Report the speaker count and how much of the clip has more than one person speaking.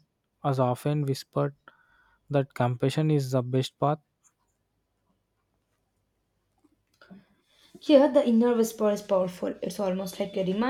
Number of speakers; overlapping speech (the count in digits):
2, no overlap